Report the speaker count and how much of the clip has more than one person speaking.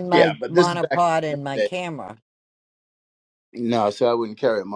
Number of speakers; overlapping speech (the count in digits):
2, about 34%